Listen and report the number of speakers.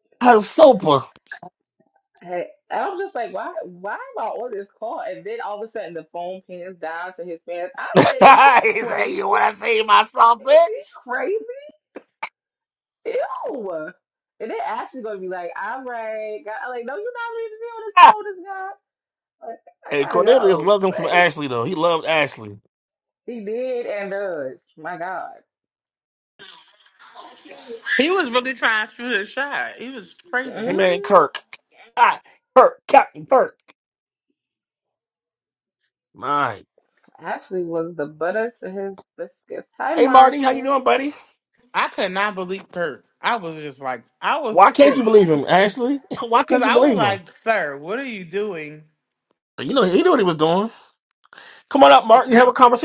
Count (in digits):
3